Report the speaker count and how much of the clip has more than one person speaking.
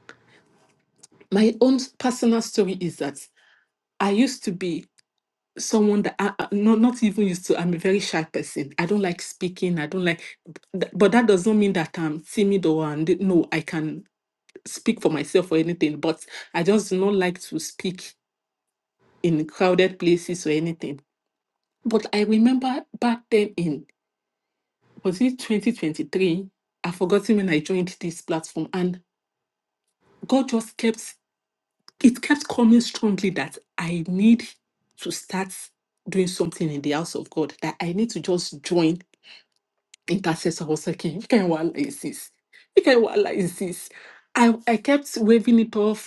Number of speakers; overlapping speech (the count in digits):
1, no overlap